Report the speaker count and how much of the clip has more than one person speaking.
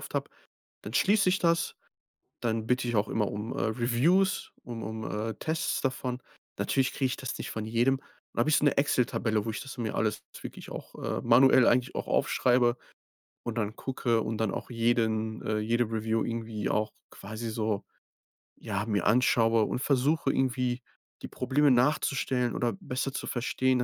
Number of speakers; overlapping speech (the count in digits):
1, no overlap